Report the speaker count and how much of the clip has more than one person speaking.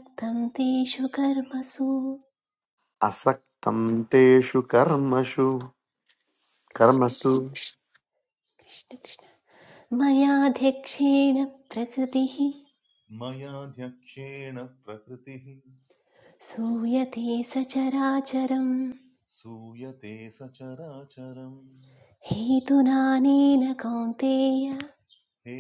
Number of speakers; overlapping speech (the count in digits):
3, about 2%